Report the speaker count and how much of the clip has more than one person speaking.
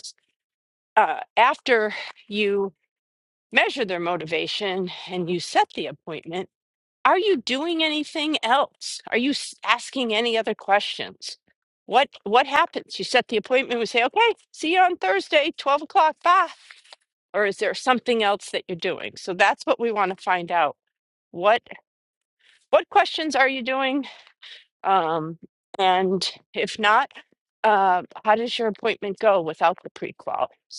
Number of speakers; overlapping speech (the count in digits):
1, no overlap